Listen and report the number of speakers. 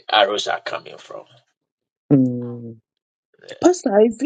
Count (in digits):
2